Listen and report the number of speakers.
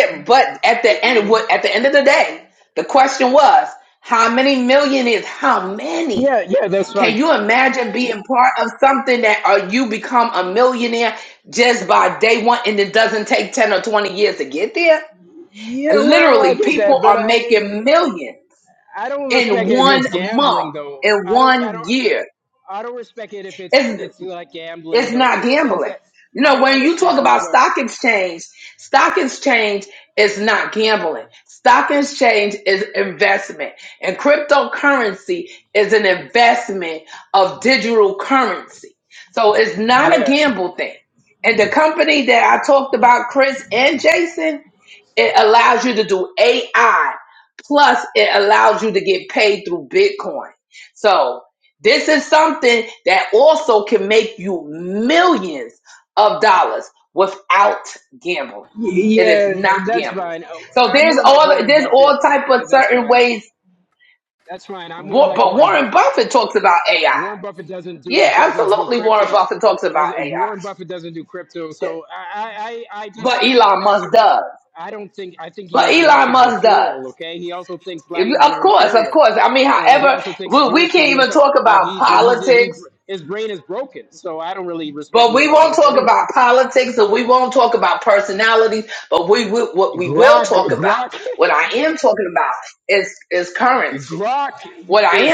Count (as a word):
two